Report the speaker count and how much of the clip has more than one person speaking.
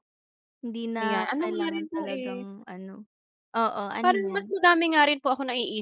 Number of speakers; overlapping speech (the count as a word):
two, about 34%